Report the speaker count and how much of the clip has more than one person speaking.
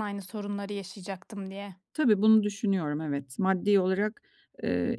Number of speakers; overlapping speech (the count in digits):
2, no overlap